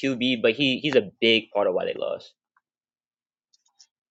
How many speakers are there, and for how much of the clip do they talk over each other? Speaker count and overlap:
1, no overlap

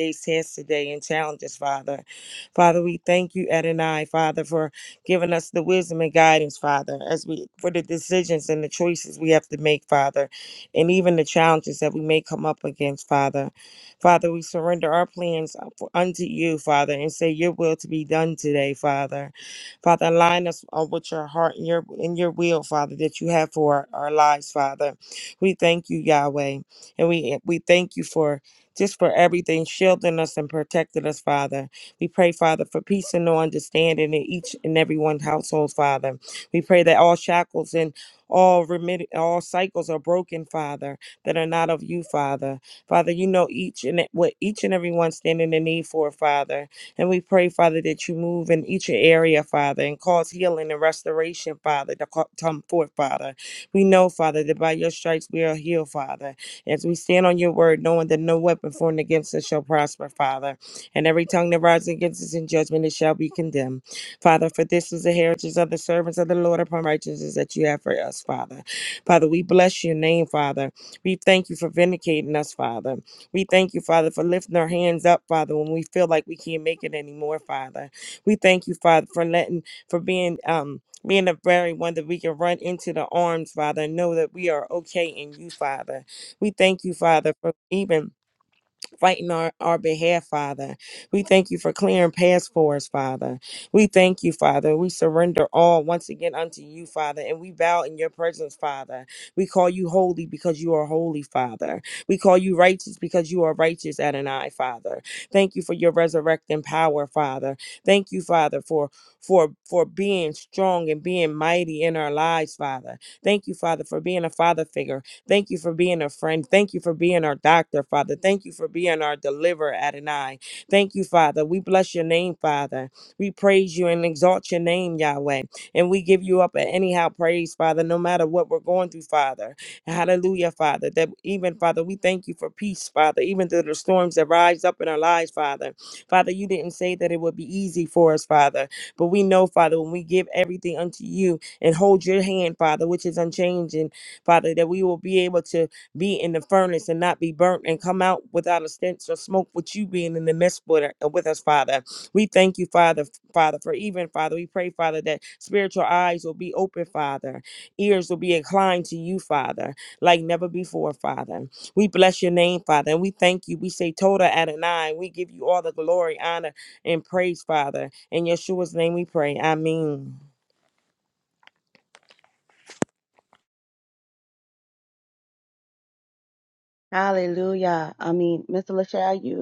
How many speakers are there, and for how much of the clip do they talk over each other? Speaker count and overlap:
2, no overlap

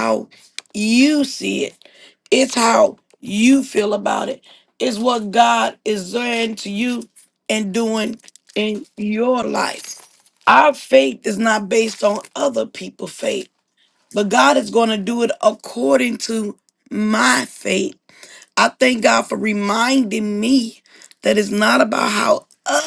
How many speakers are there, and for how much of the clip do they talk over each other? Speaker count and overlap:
1, no overlap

